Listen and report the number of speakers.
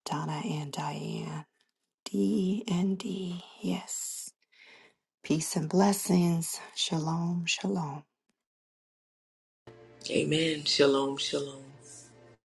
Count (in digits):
2